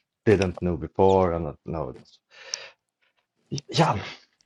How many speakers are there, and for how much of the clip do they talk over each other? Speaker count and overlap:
one, no overlap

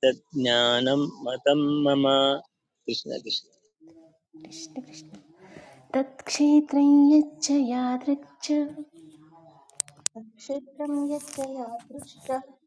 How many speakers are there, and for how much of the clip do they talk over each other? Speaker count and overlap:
three, no overlap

